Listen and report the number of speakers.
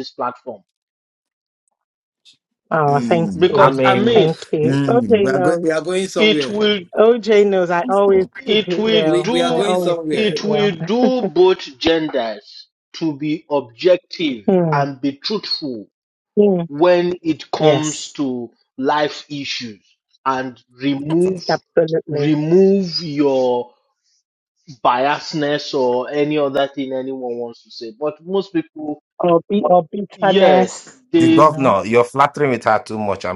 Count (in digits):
4